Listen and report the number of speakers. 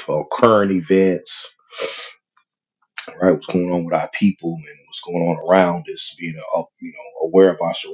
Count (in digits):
1